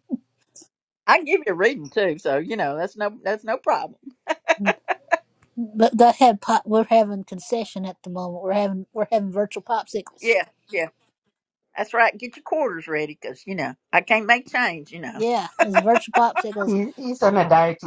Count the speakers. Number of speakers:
three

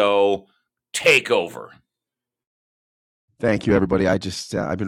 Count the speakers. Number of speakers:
two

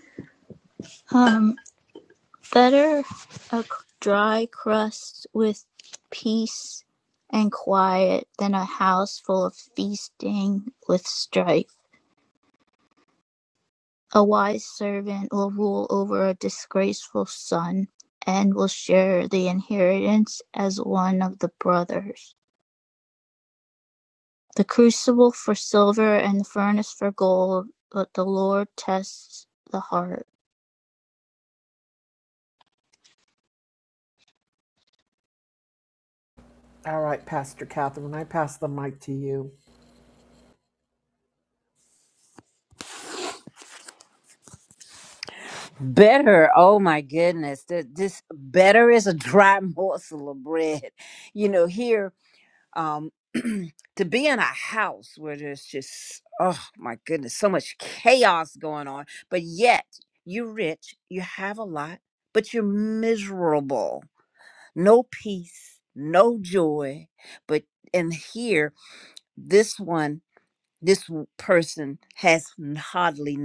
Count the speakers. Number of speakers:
three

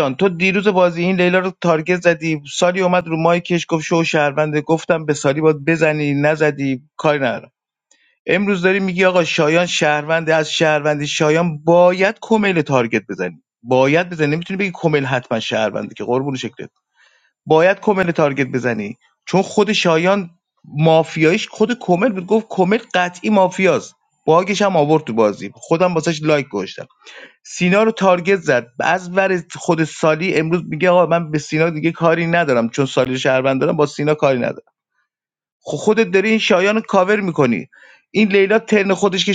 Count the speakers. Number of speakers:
one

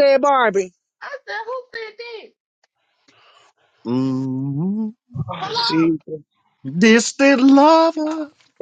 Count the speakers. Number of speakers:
three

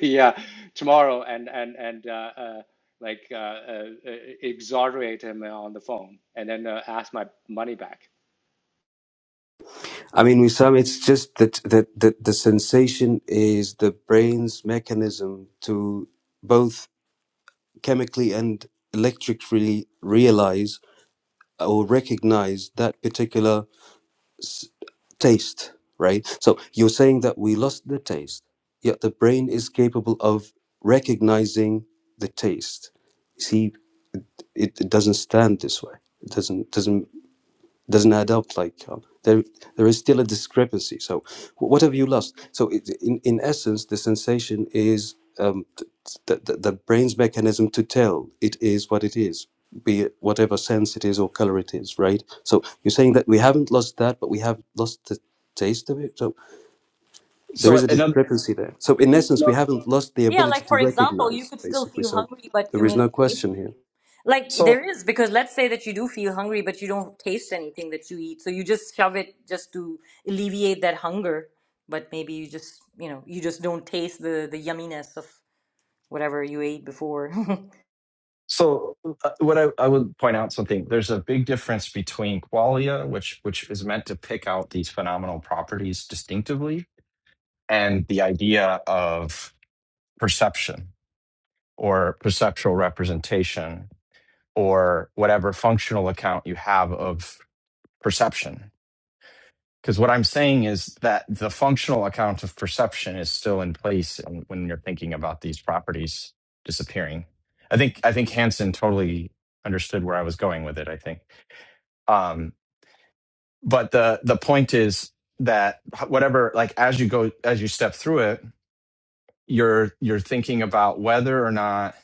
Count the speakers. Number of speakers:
four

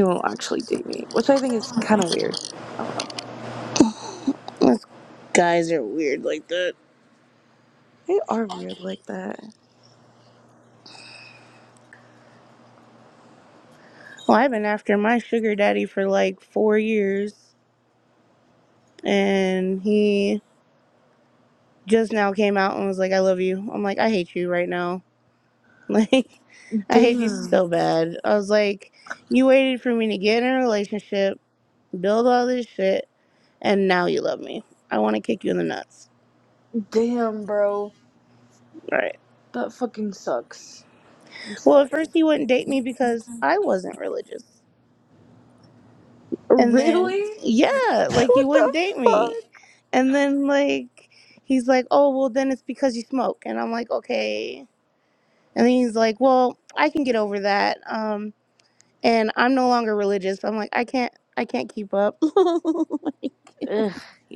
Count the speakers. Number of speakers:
two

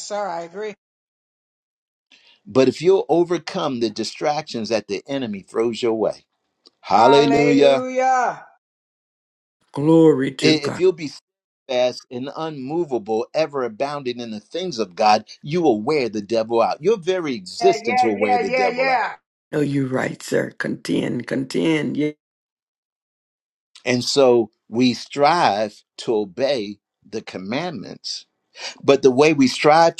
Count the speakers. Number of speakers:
three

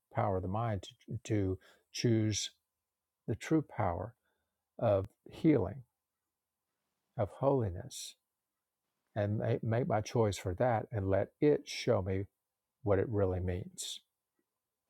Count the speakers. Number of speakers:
one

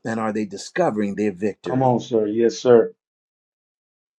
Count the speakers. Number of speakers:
two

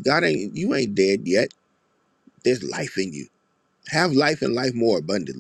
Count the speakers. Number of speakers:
one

